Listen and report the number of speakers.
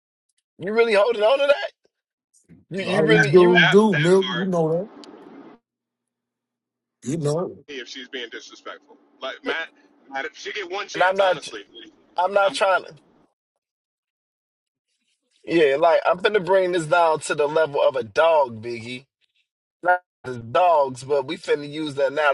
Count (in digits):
3